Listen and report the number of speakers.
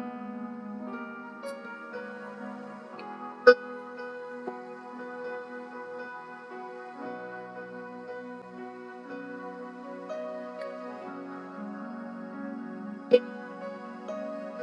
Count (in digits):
0